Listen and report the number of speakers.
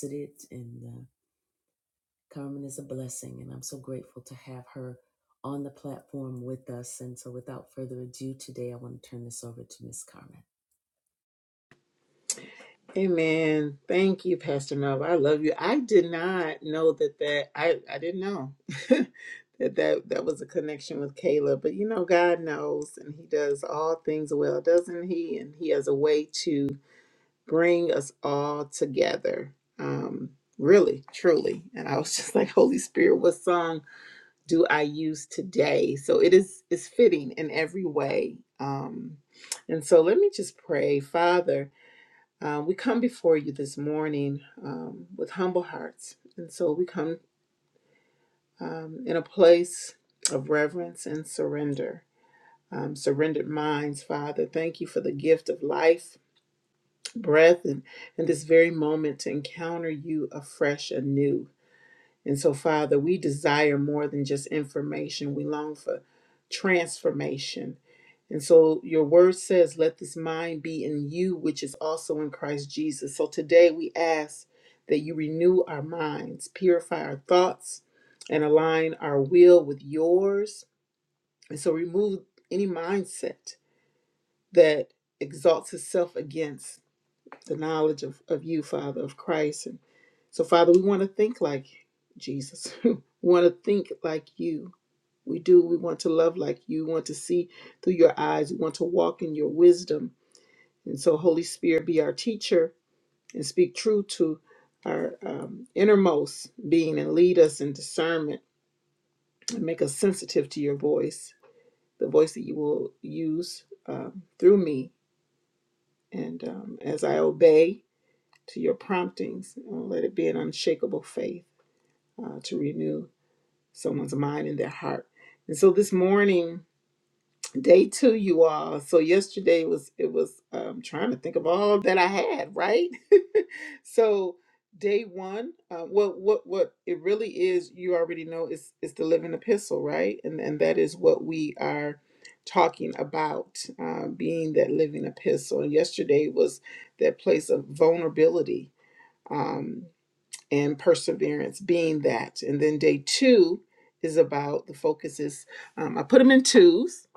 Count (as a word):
two